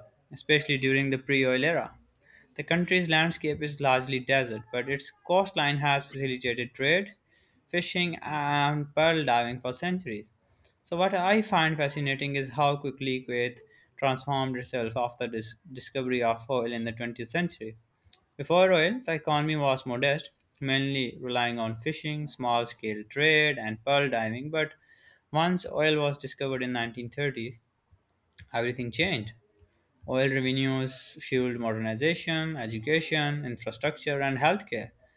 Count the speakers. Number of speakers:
one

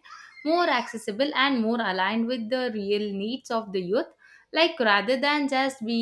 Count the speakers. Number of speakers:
one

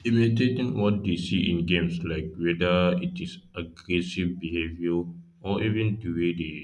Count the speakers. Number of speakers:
one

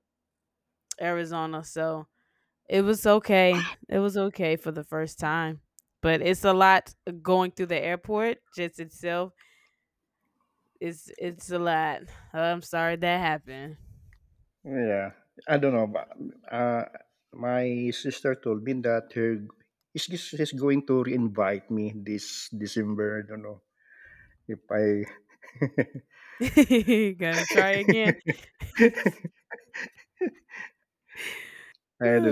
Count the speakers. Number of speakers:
two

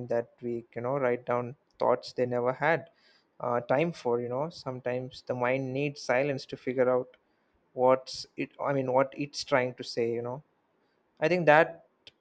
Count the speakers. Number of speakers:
one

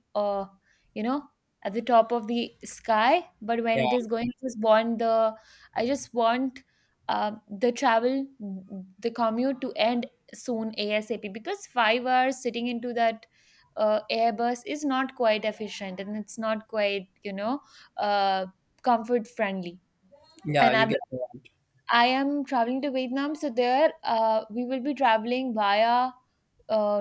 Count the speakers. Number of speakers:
two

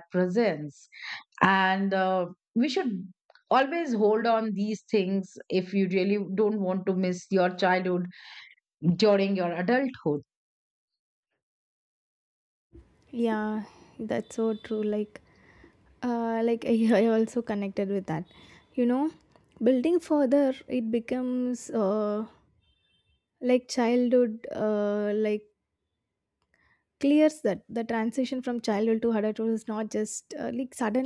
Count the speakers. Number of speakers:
two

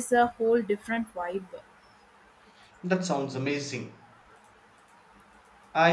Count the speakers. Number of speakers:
two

